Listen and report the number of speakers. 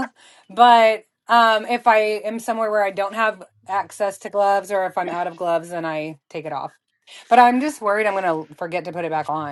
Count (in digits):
1